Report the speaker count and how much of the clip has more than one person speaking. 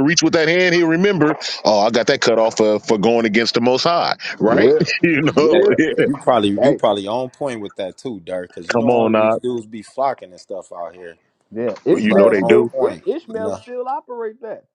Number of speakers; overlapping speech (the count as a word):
three, about 24%